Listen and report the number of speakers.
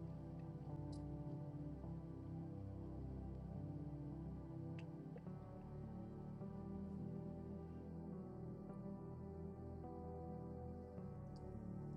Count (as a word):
zero